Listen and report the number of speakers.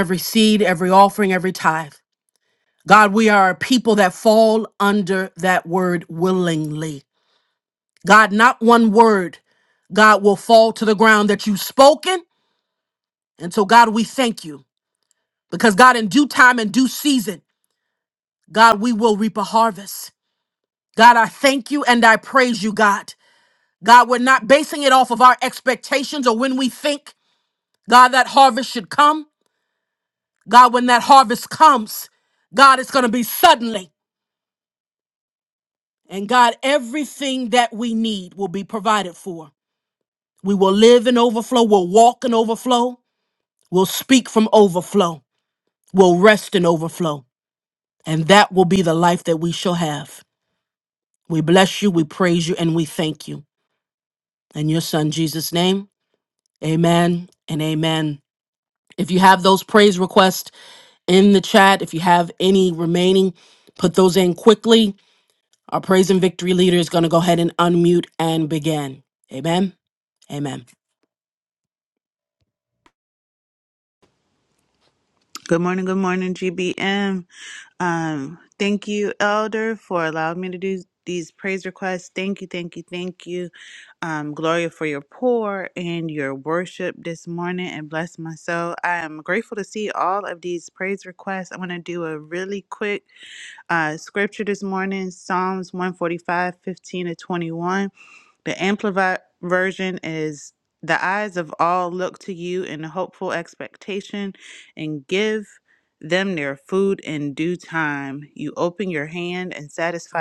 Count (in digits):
2